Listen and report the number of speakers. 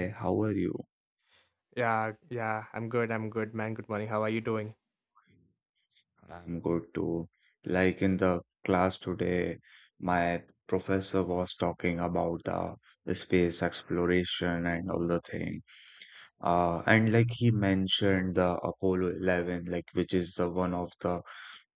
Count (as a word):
two